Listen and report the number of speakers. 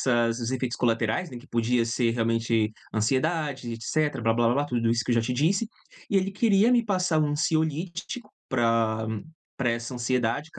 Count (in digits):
1